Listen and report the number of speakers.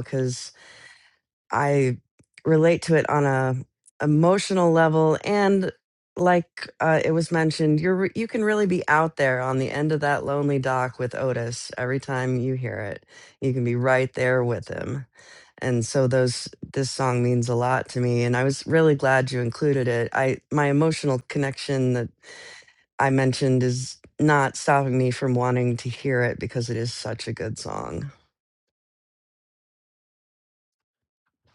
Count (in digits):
1